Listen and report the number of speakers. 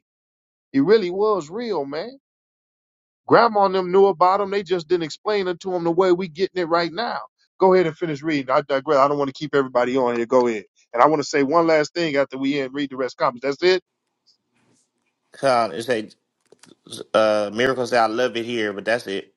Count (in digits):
2